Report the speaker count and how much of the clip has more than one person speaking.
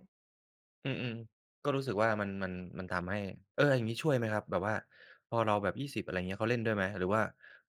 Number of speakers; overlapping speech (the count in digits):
1, no overlap